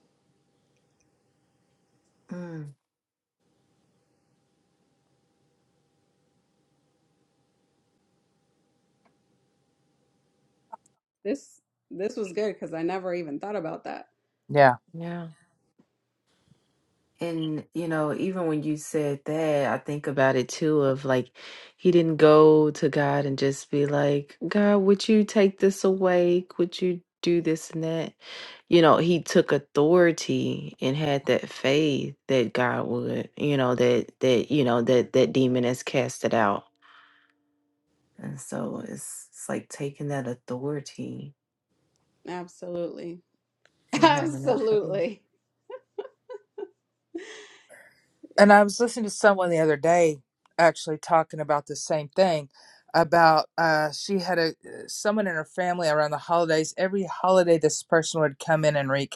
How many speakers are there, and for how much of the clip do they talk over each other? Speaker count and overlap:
3, about 2%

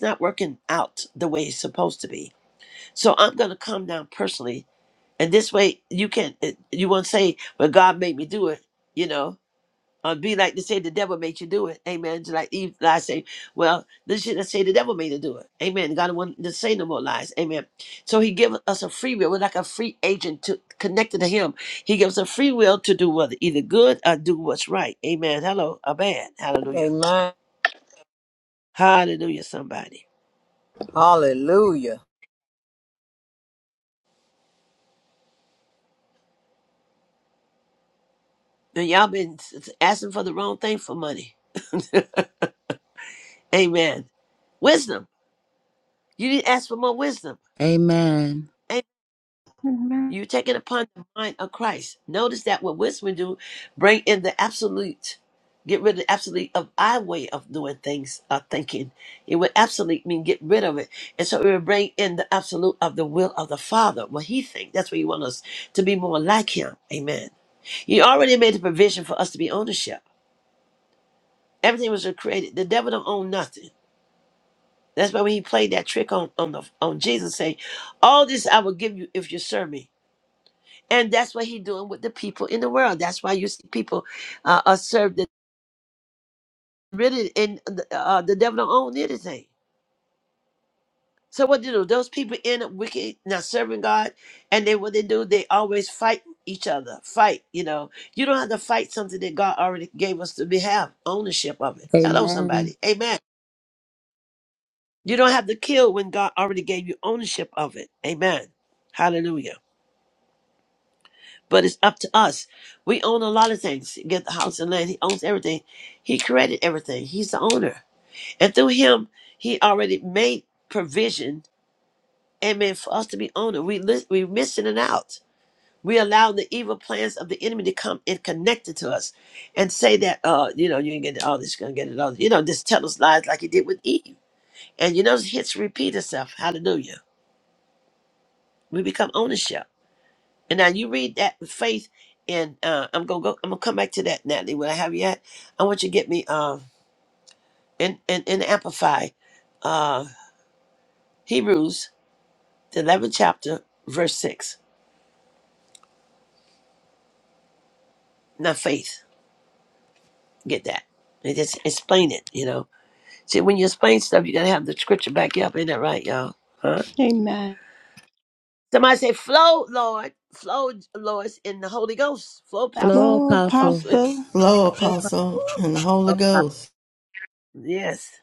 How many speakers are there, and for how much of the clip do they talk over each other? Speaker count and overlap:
5, about 1%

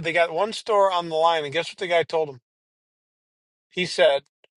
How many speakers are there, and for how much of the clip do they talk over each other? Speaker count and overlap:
1, no overlap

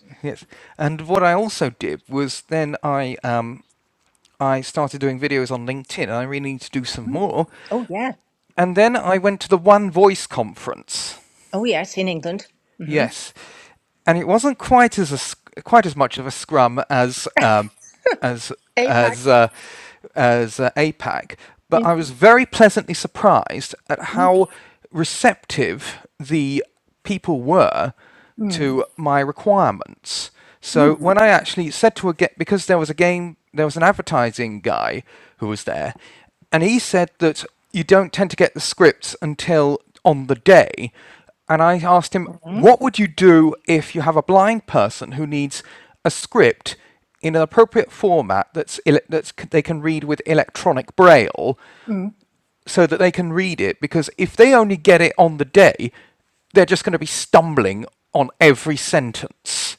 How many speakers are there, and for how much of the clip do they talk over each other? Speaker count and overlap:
2, about 3%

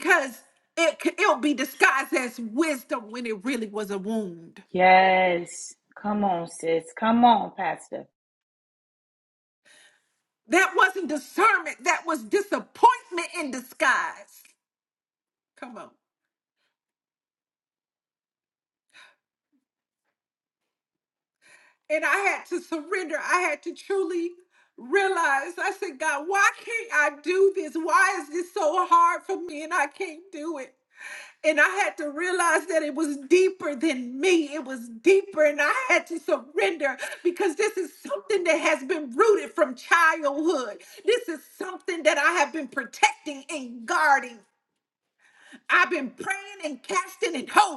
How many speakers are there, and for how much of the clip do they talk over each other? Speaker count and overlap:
2, no overlap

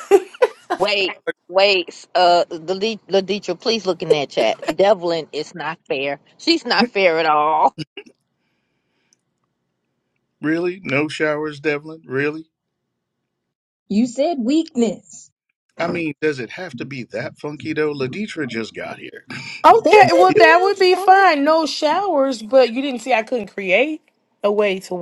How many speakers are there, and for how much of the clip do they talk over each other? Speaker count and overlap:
4, about 6%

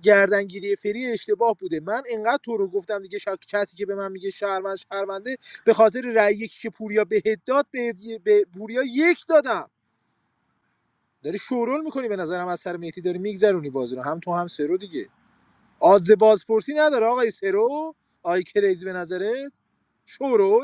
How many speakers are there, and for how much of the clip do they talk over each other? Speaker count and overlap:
1, no overlap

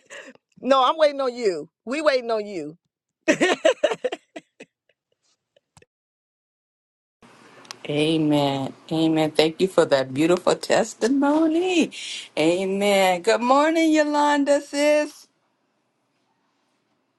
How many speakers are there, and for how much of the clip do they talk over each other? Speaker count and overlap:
2, no overlap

